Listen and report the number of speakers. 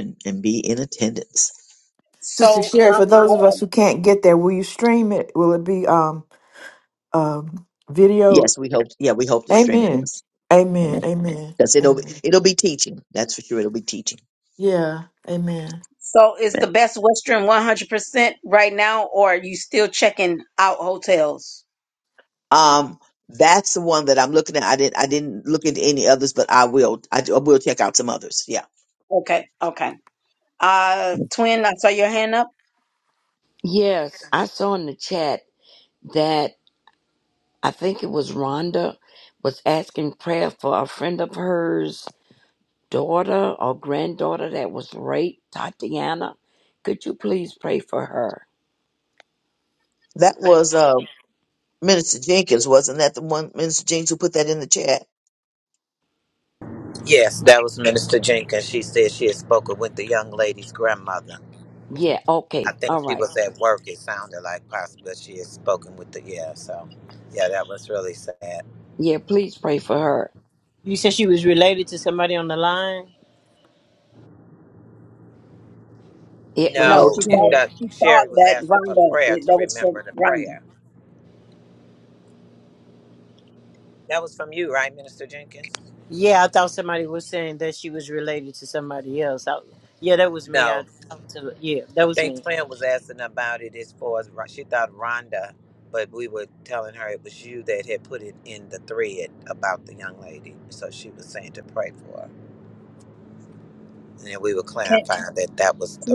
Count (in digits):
6